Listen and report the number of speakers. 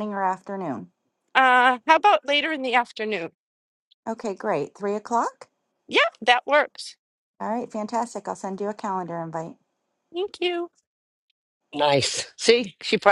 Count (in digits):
3